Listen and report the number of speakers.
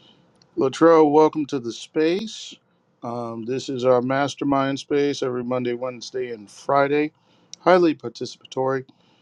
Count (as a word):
one